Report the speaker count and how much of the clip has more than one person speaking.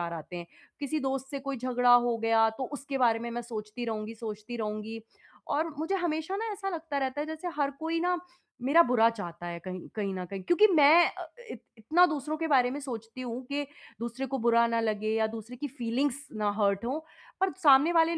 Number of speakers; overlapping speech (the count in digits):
1, no overlap